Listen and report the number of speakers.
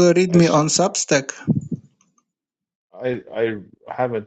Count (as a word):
two